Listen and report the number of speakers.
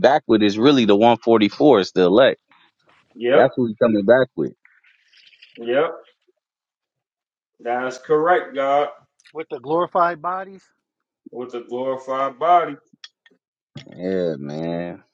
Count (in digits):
3